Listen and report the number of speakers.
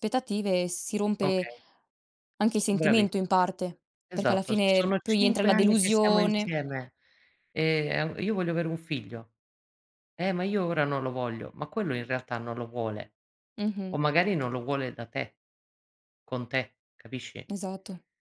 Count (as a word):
two